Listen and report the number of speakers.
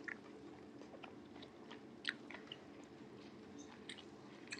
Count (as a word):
zero